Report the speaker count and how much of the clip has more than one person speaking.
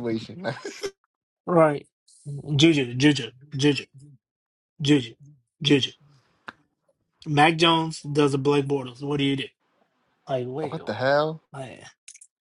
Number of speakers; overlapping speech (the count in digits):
2, about 2%